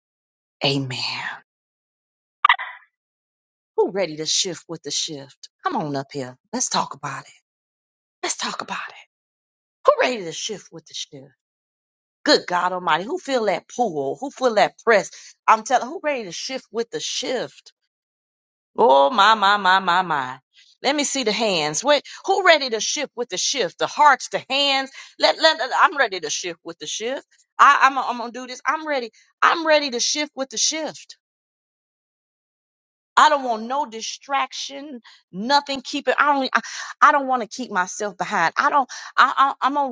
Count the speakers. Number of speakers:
one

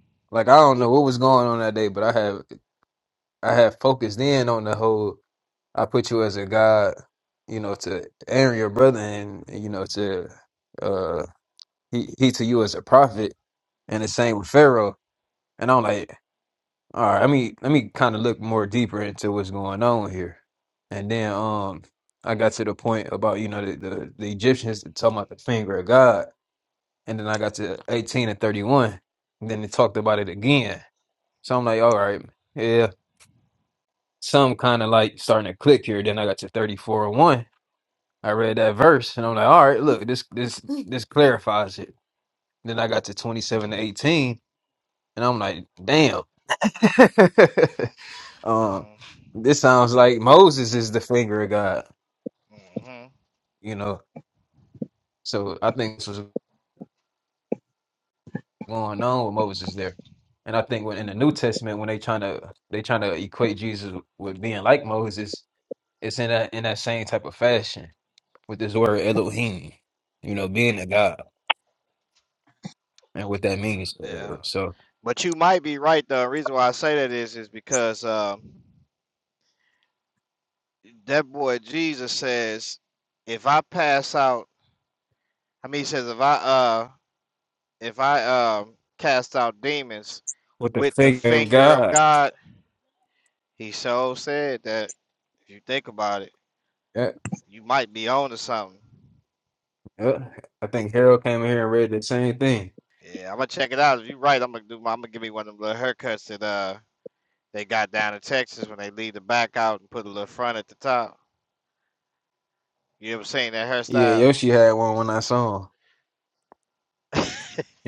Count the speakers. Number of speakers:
two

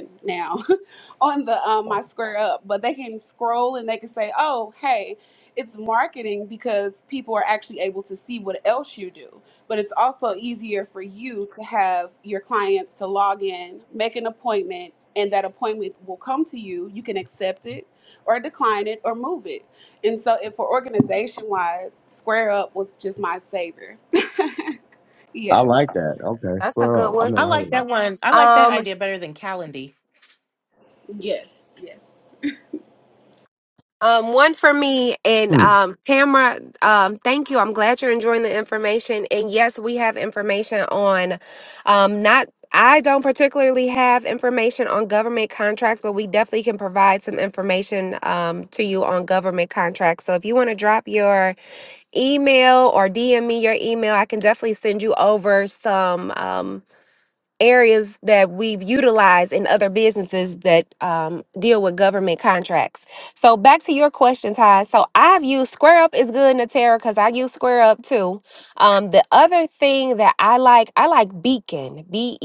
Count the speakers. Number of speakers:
four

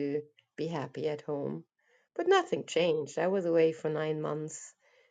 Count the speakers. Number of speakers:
one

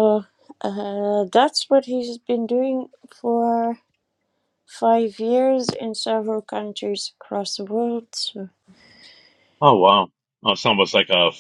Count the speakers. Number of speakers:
two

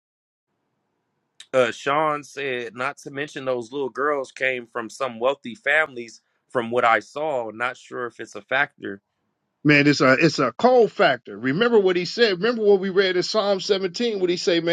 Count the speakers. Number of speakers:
two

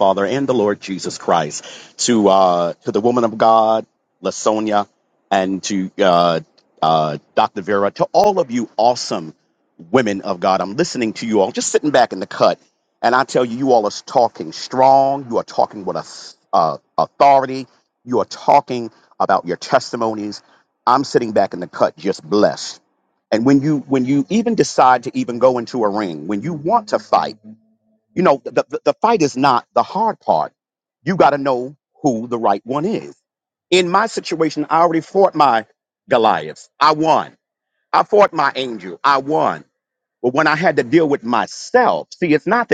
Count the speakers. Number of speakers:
one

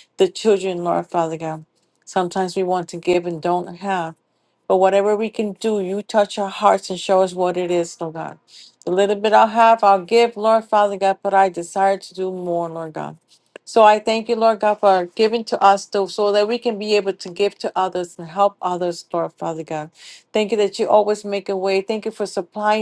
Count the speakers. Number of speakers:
one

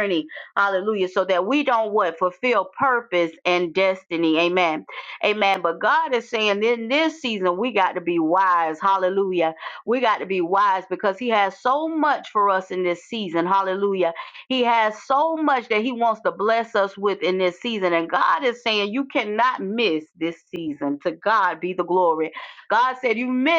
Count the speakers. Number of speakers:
one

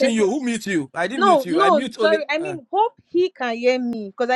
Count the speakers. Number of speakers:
two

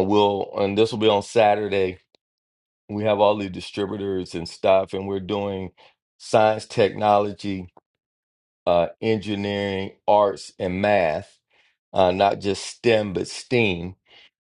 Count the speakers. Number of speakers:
one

